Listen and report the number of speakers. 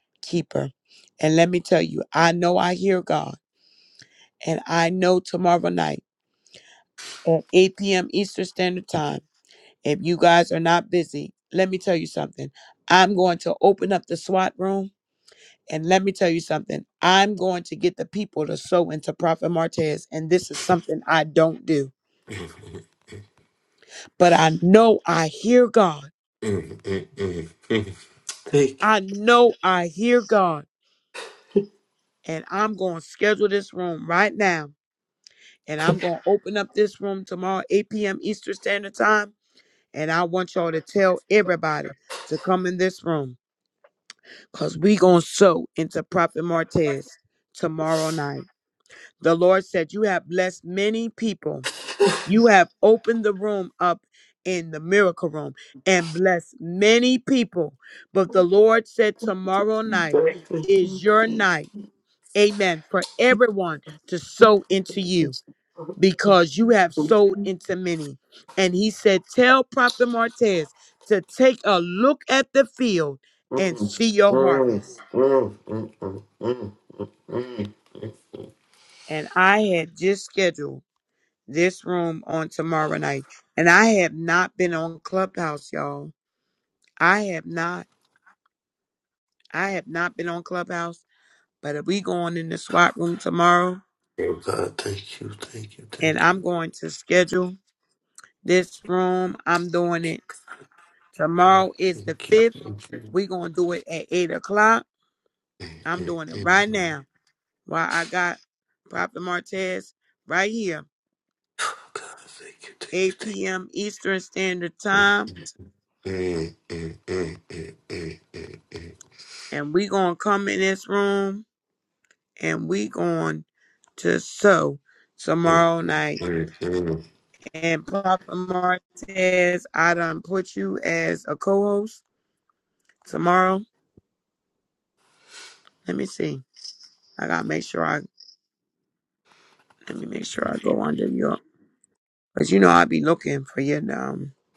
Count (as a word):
two